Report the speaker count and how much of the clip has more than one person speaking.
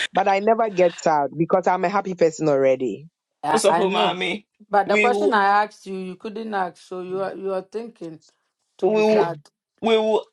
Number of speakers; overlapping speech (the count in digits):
3, about 16%